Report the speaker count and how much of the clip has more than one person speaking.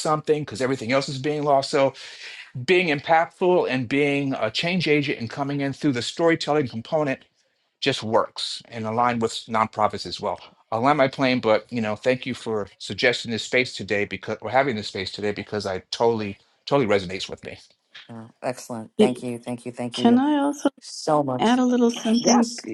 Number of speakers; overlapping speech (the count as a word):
three, about 4%